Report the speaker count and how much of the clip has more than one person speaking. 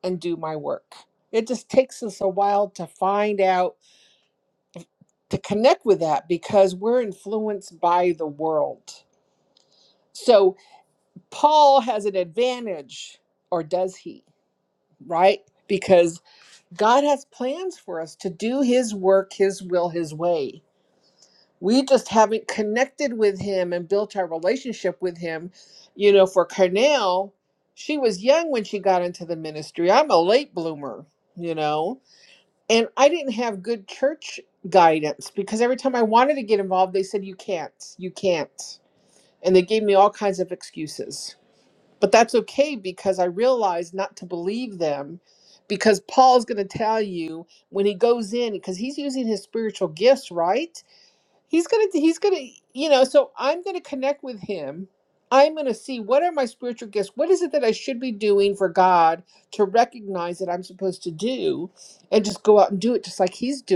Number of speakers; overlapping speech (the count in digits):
1, no overlap